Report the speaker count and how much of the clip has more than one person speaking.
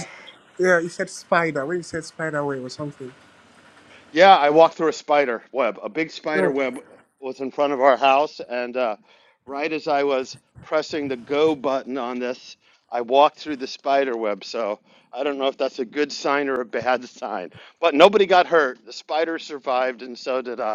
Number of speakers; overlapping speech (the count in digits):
2, about 1%